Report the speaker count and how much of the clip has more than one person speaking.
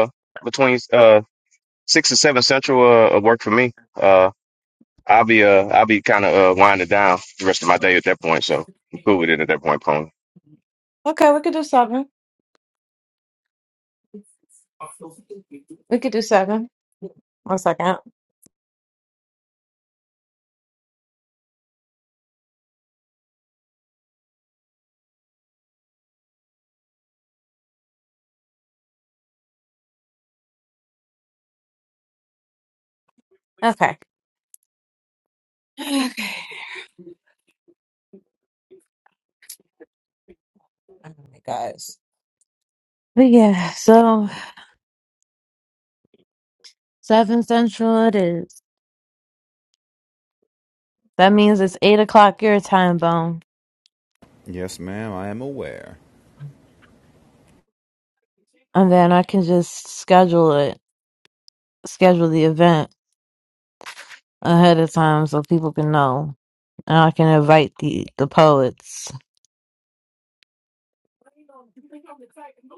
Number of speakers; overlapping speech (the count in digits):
3, no overlap